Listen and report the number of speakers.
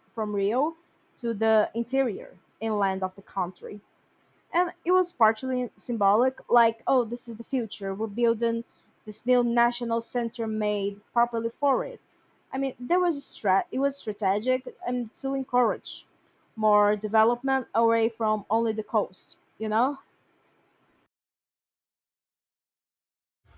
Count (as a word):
one